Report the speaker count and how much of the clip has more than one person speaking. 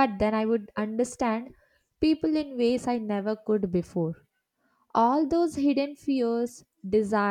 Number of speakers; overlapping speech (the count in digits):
1, no overlap